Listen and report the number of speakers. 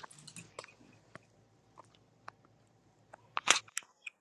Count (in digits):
0